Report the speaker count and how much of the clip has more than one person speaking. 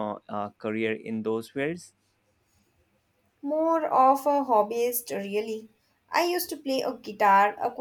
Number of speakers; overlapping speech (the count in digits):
2, no overlap